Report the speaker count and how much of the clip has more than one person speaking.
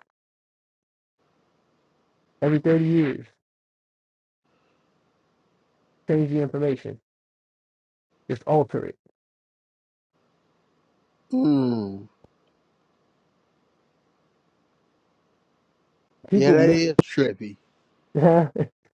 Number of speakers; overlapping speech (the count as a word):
two, about 2%